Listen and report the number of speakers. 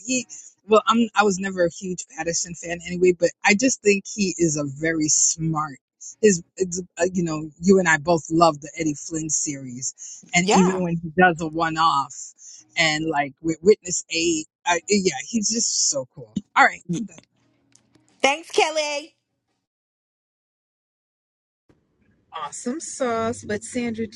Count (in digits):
3